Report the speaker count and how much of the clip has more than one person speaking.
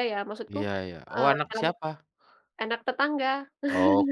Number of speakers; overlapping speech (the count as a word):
two, about 18%